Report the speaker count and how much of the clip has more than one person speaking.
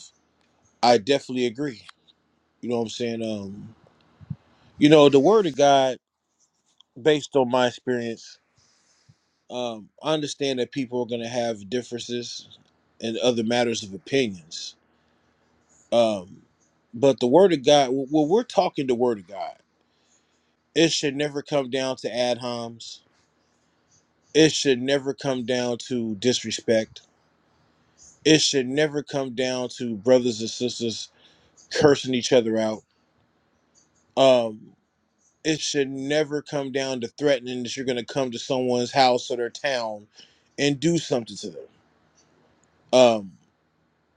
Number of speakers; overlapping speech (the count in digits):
1, no overlap